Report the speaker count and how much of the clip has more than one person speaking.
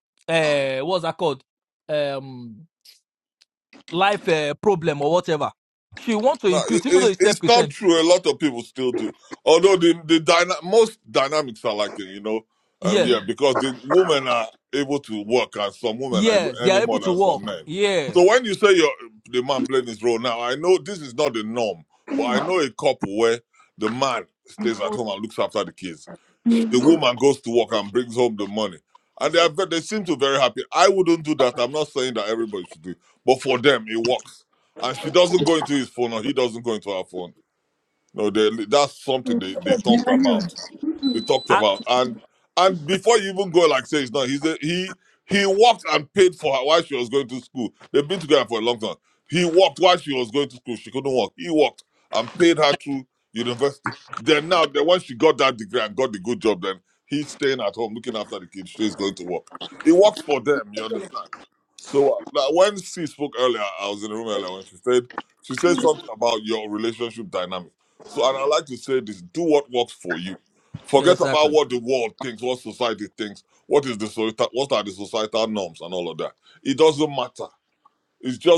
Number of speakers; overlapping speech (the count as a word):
two, about 5%